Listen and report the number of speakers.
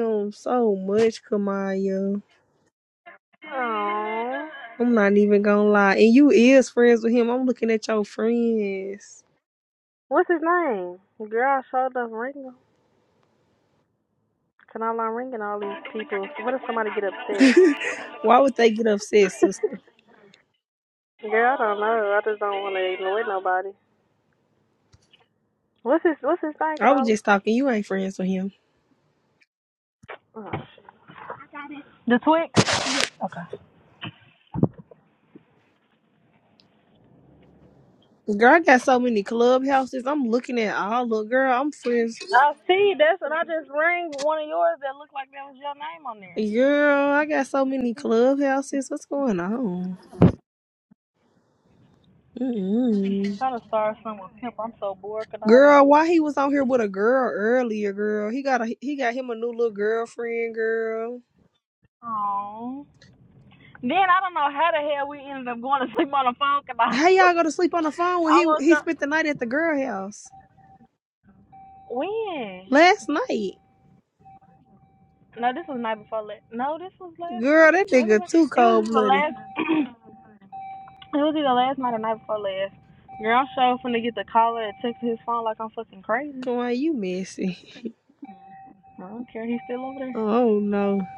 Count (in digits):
2